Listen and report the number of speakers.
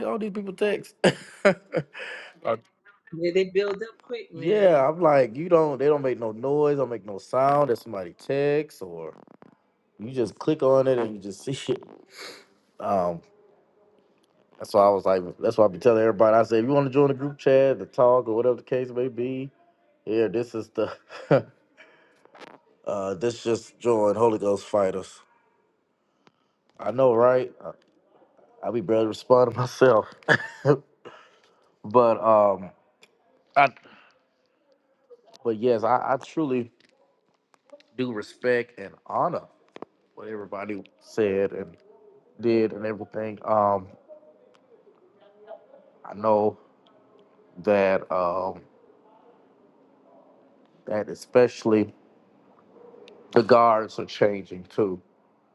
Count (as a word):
two